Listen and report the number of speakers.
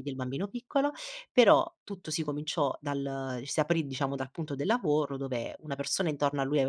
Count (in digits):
1